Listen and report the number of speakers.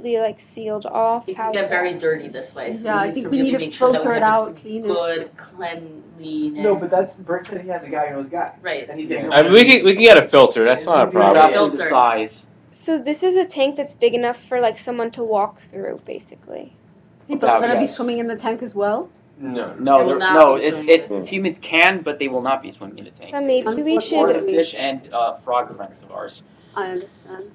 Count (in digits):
6